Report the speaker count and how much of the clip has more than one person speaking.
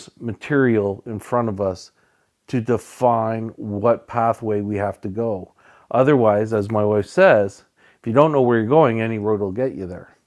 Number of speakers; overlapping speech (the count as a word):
one, no overlap